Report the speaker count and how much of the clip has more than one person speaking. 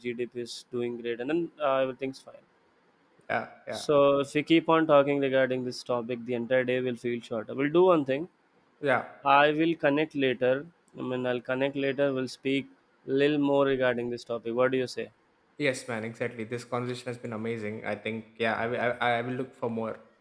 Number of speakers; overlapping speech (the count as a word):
two, about 1%